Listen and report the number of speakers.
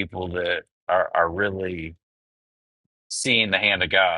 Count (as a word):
one